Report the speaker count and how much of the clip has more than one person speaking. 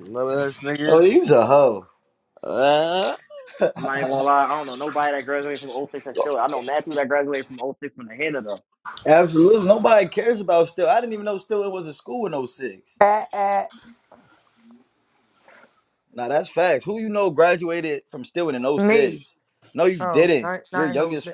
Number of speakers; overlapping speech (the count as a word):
four, about 9%